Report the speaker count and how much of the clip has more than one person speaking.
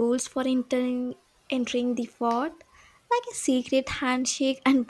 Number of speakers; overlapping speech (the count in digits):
1, no overlap